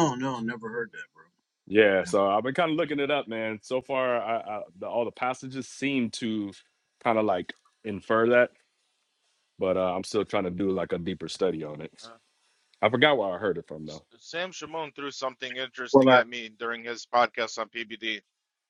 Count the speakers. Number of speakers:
three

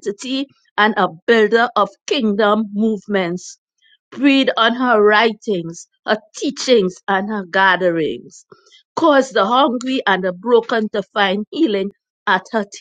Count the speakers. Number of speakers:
one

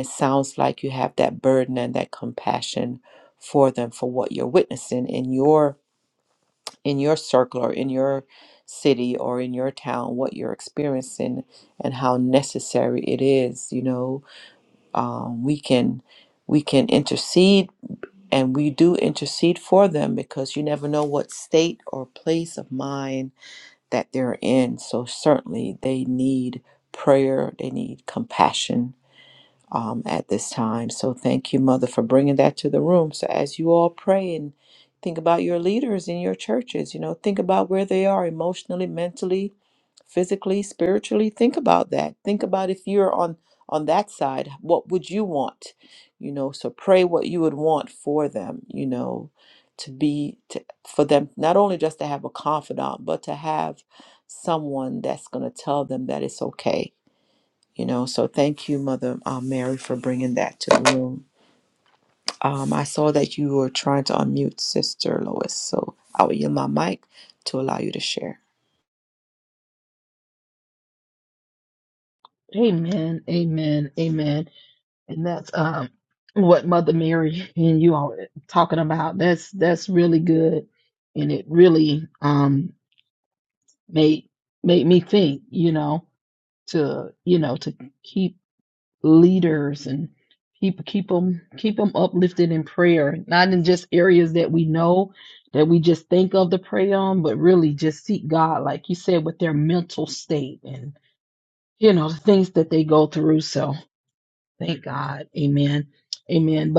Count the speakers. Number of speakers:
two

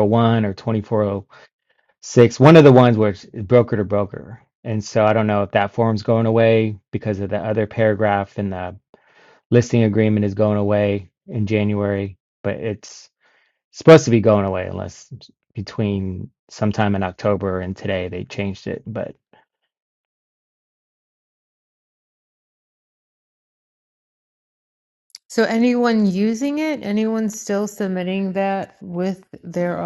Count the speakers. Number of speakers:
two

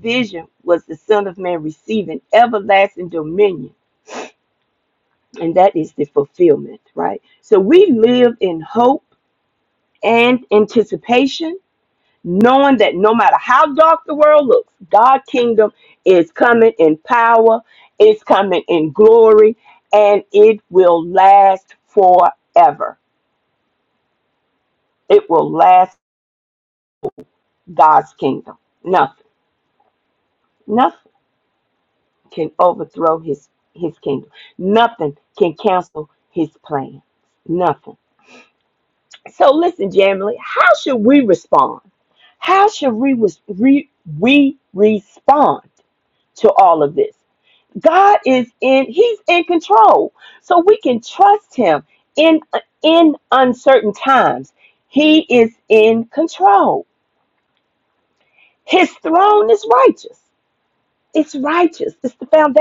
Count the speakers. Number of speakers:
one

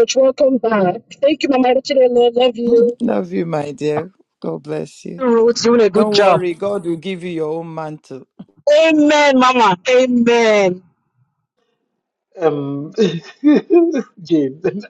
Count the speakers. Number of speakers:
three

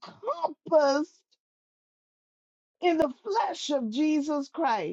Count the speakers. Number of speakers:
one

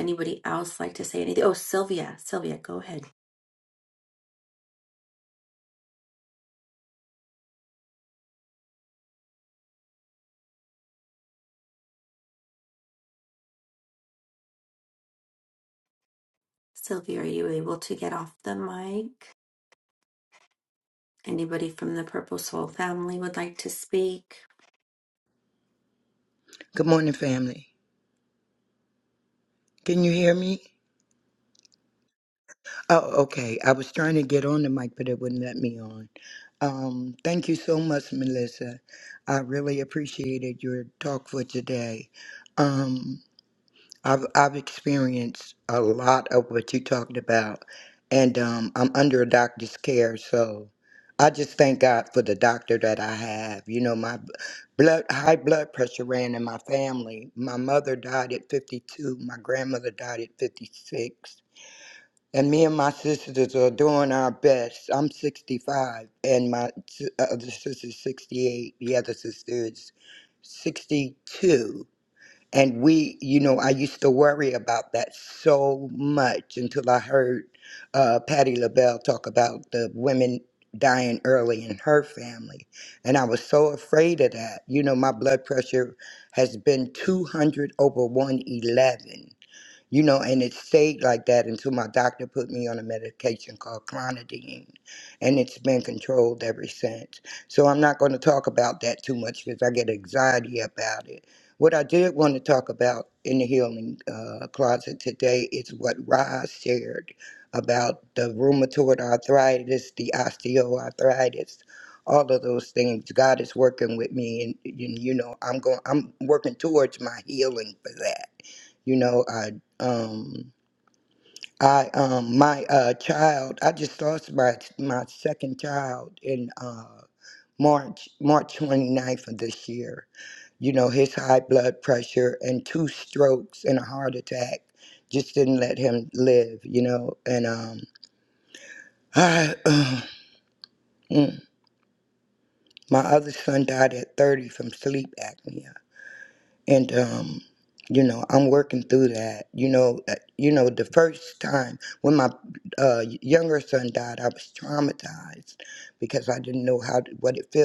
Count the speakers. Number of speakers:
two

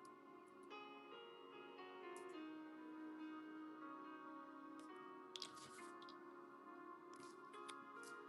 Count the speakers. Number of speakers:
zero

